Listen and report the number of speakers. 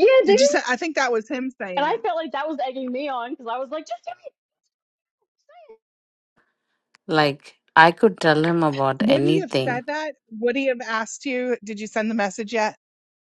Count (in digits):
3